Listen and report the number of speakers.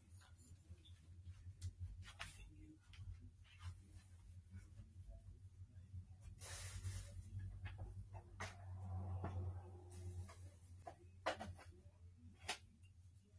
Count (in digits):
0